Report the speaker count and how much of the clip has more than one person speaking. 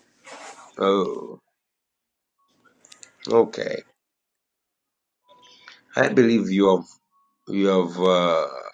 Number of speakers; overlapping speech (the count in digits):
1, no overlap